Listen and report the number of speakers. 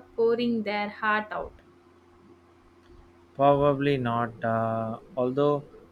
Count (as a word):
two